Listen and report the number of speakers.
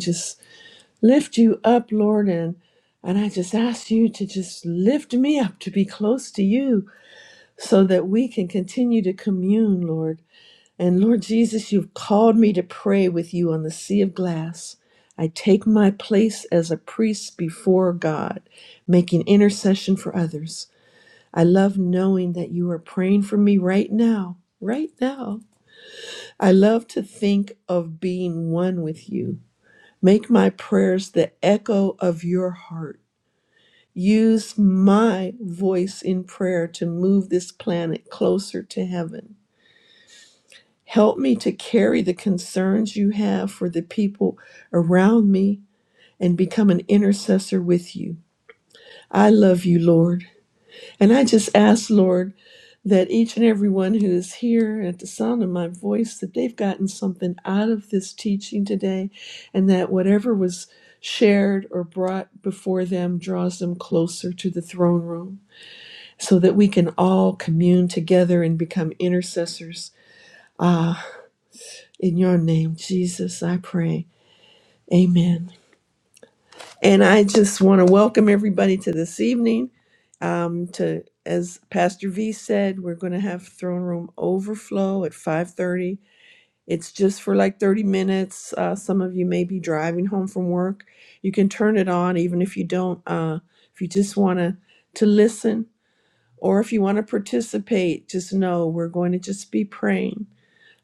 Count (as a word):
one